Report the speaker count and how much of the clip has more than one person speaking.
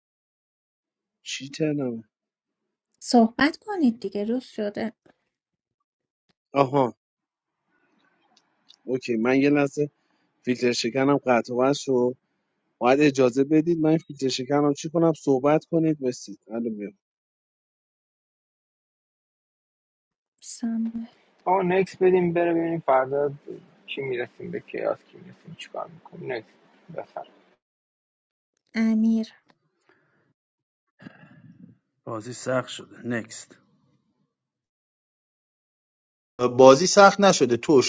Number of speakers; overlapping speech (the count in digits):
5, no overlap